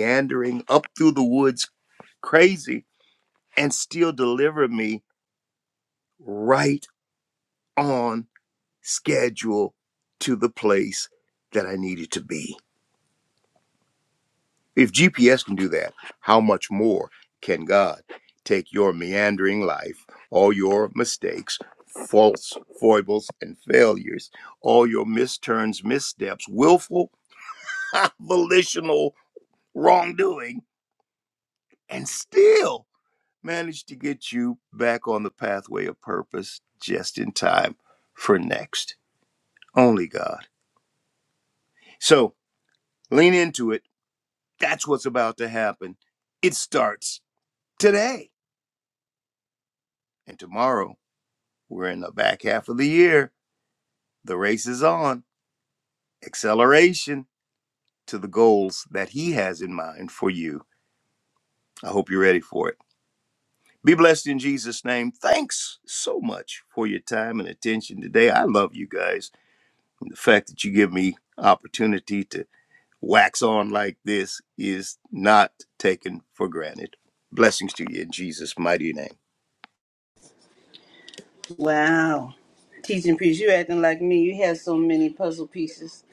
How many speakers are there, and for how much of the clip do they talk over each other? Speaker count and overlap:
2, no overlap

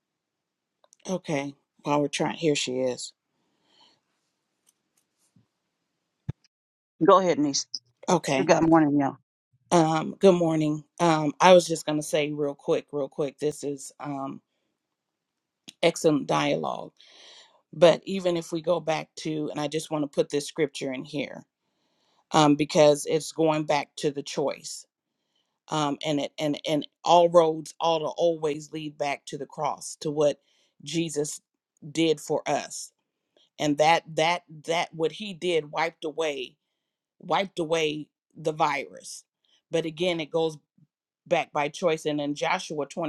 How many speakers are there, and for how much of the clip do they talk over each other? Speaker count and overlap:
2, under 1%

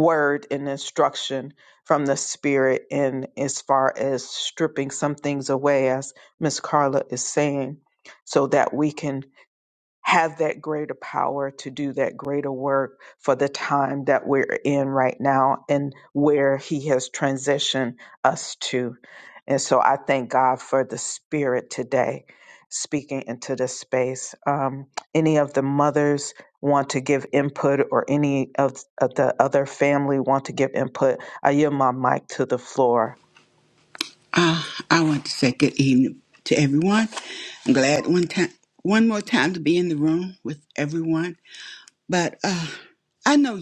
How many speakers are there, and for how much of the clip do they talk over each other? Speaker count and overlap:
2, no overlap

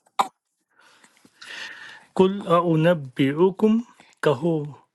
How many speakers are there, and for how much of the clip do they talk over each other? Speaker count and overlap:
1, no overlap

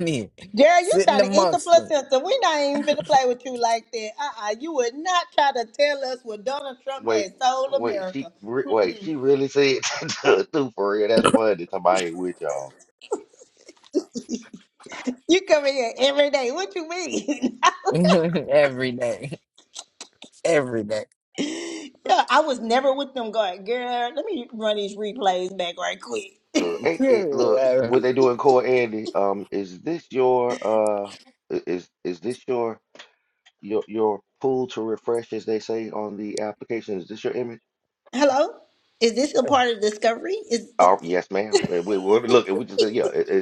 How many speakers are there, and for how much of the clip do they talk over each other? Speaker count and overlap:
3, about 7%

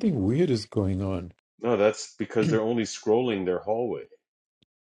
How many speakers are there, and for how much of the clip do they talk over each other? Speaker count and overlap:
2, no overlap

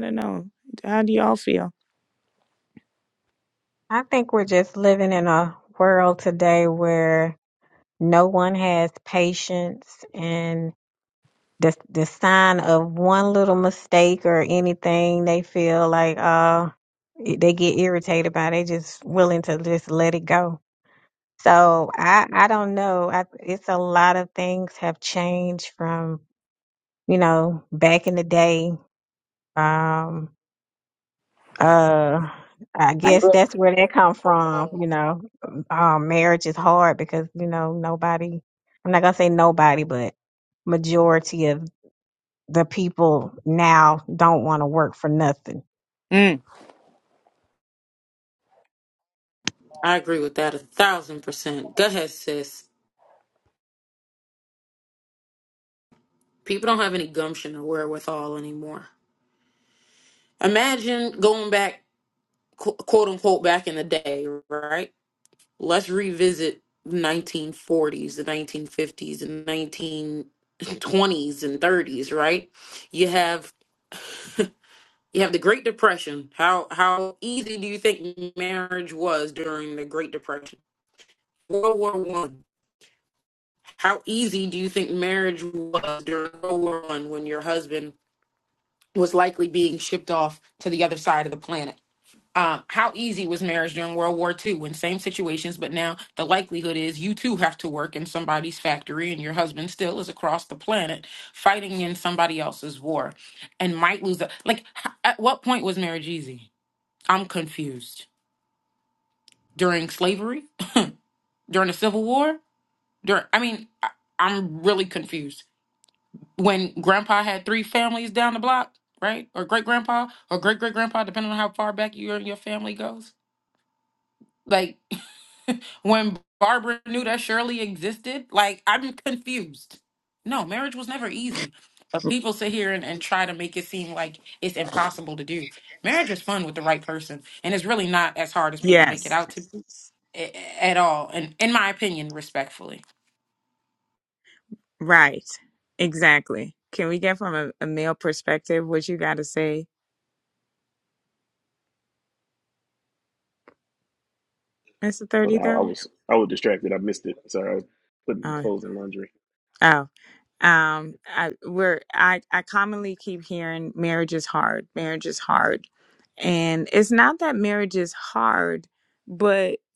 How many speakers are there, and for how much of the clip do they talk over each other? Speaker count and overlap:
4, about 1%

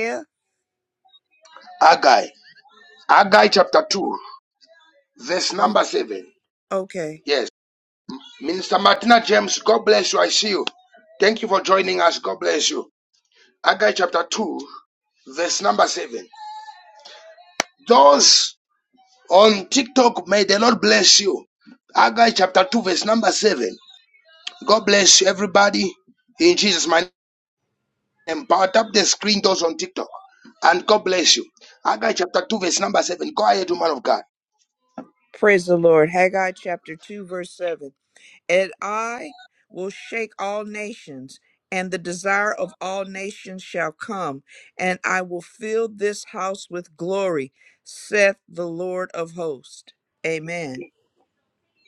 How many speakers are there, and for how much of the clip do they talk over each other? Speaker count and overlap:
2, under 1%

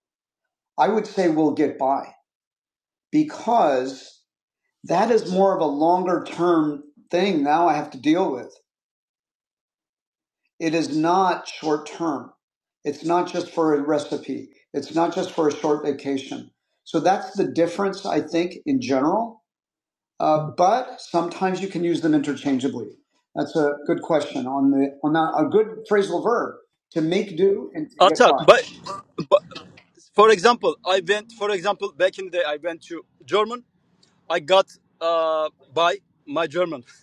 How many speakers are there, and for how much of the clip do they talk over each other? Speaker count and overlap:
2, about 1%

